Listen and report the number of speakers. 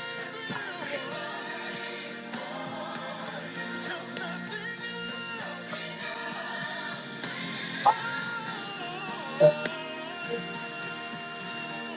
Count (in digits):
0